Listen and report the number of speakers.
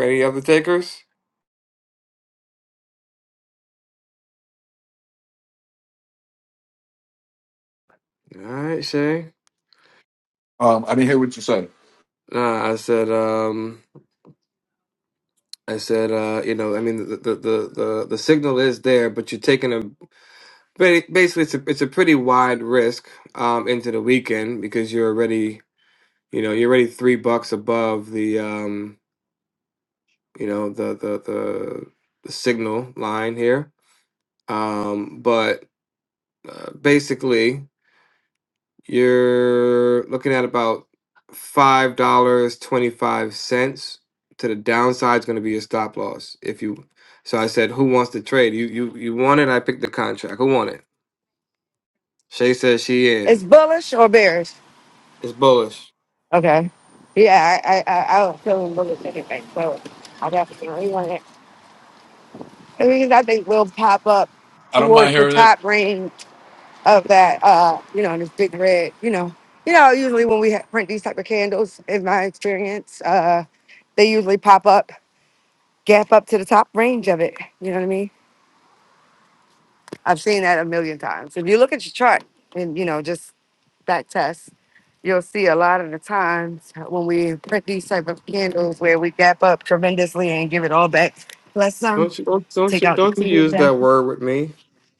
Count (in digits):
3